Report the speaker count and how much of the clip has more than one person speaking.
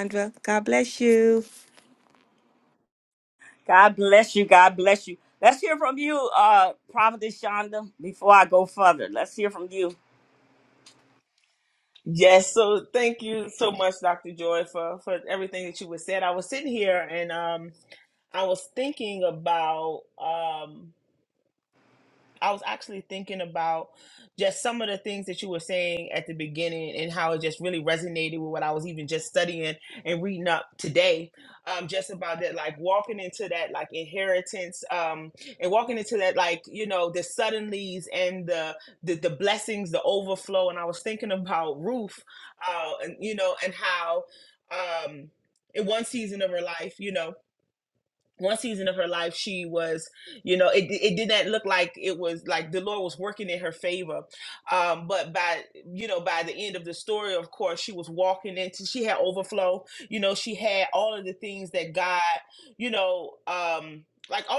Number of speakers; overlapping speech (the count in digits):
3, no overlap